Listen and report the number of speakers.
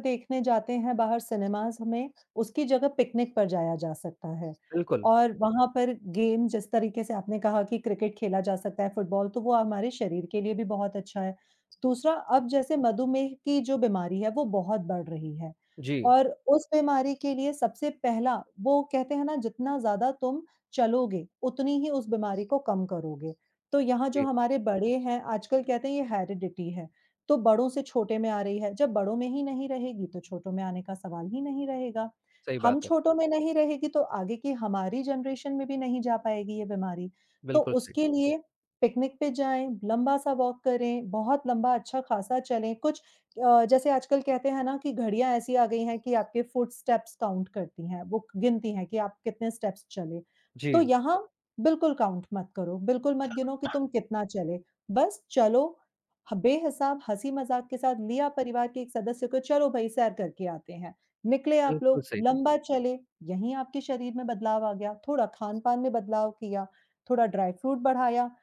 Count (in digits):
2